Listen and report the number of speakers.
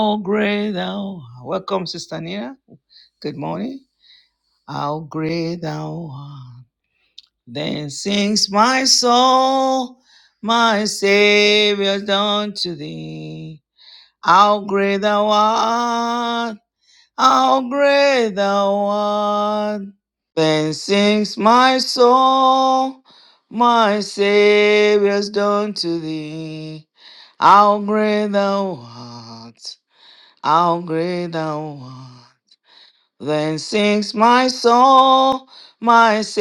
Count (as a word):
one